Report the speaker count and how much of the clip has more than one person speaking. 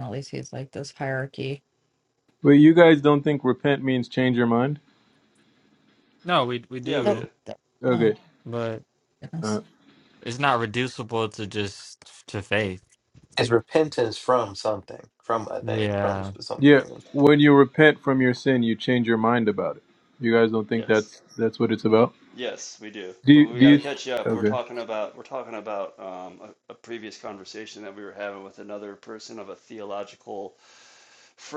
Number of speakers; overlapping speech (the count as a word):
five, about 10%